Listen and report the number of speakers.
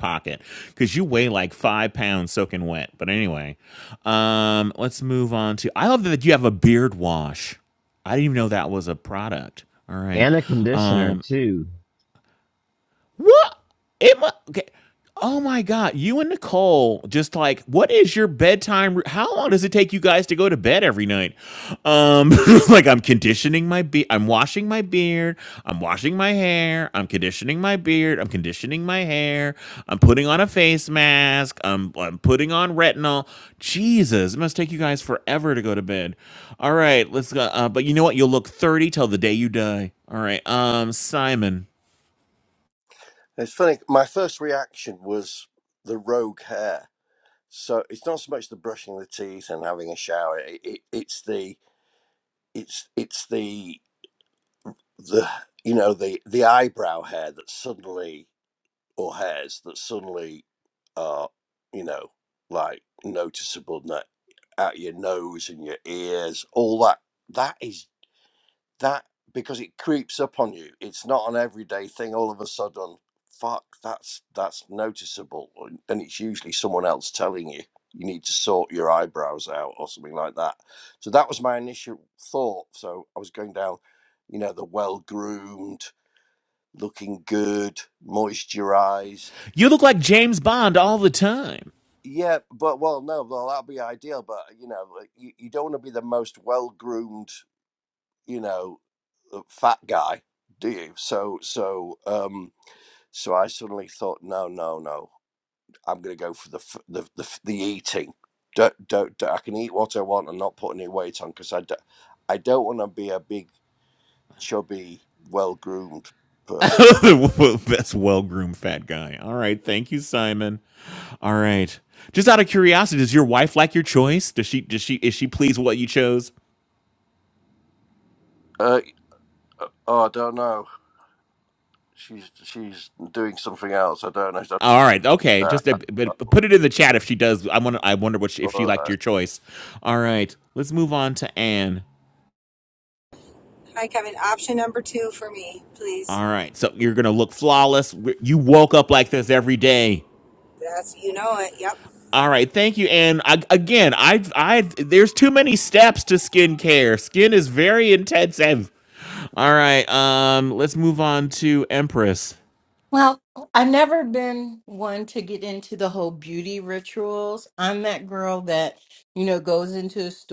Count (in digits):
5